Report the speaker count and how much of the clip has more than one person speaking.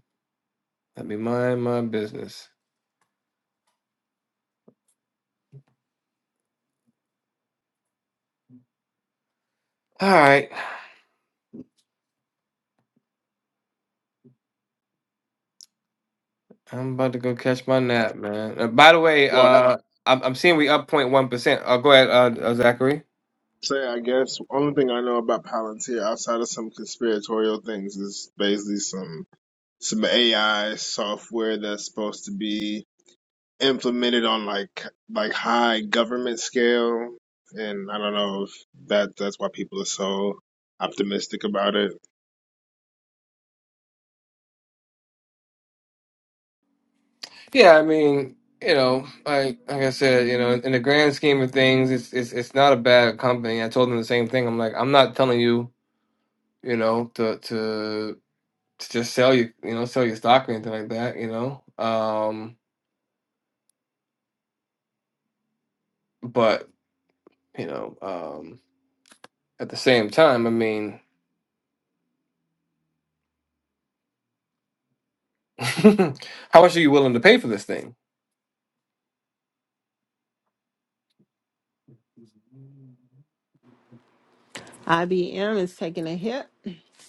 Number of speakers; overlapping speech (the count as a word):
three, under 1%